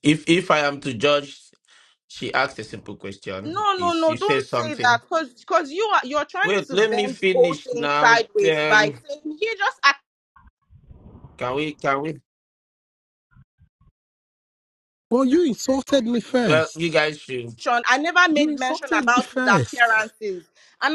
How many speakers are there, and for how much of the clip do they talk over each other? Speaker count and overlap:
3, about 30%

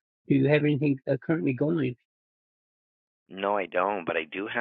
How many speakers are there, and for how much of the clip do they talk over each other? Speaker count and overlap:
2, no overlap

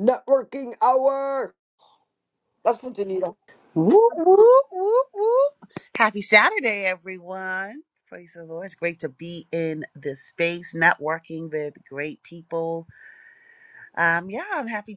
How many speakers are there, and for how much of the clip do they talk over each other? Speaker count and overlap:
2, no overlap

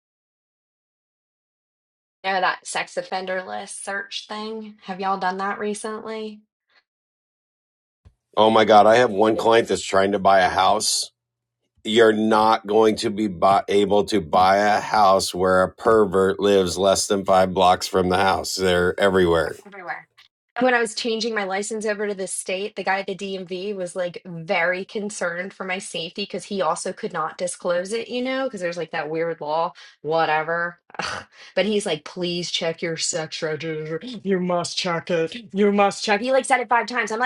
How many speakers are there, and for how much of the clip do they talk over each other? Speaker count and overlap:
2, no overlap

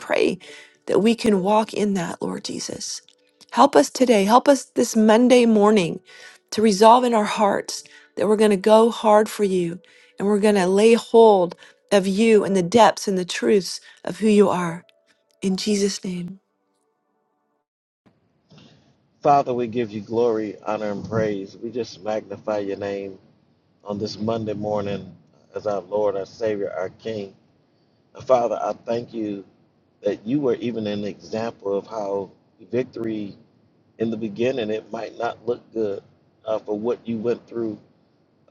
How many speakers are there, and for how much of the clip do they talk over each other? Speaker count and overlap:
2, no overlap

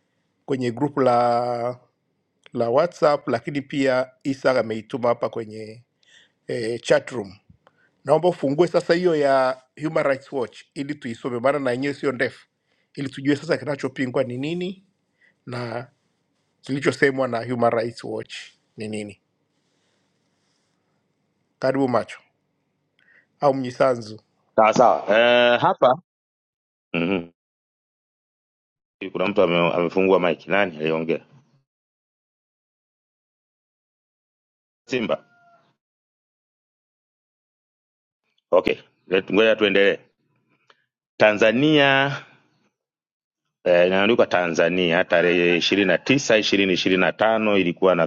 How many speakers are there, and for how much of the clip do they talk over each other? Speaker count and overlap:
2, no overlap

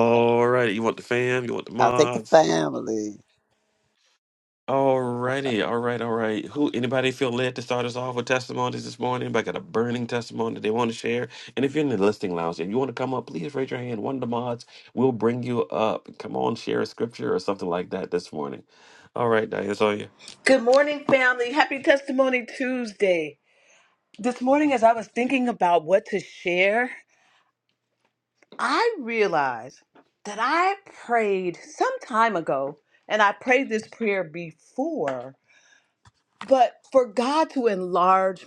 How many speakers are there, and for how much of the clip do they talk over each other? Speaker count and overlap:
3, about 1%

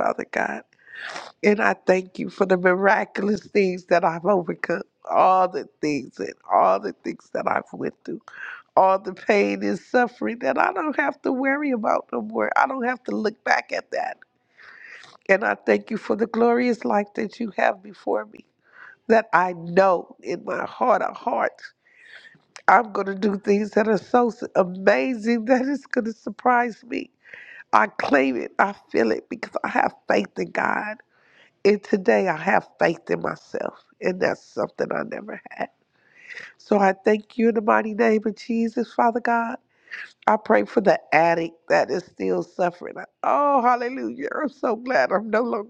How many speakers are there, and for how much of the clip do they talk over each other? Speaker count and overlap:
1, no overlap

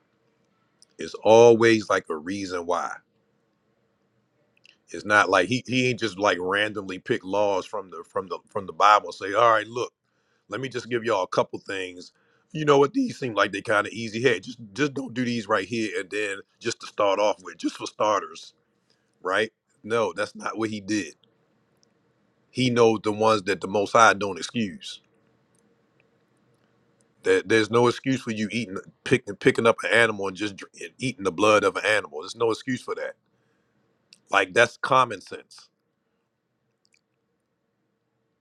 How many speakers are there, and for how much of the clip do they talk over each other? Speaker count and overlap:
1, no overlap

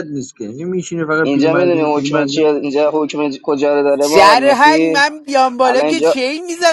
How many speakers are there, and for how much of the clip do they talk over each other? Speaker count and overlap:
3, about 41%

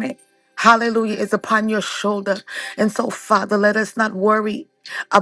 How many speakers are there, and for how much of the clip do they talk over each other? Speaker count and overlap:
1, no overlap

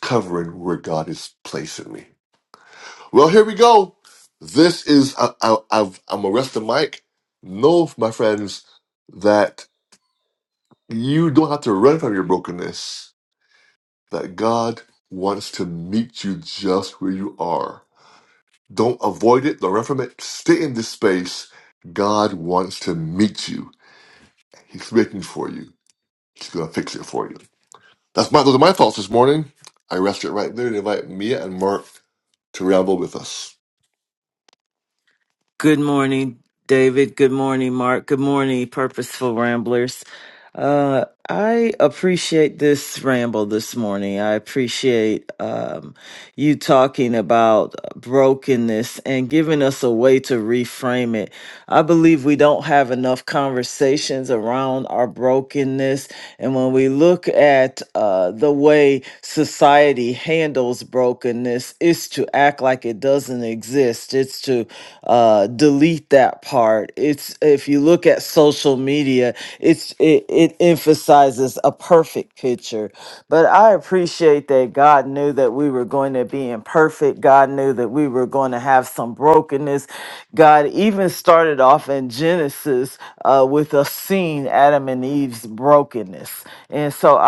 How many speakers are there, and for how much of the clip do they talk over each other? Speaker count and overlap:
2, no overlap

